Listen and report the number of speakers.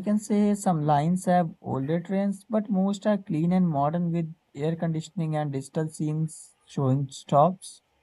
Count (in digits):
1